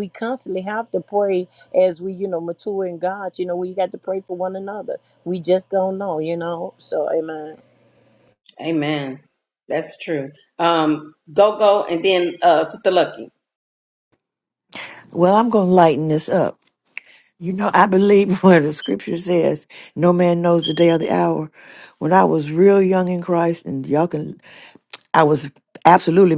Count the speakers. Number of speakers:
3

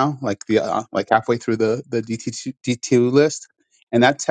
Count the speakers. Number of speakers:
1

